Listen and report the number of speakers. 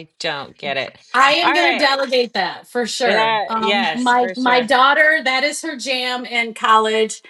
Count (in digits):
2